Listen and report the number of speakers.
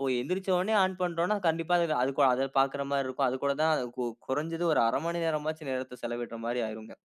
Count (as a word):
one